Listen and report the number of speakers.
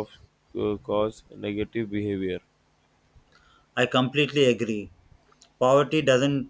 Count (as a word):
two